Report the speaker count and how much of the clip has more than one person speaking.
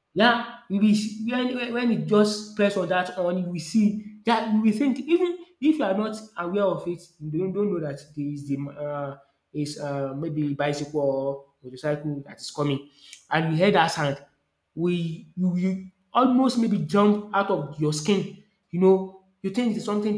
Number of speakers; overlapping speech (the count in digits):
1, no overlap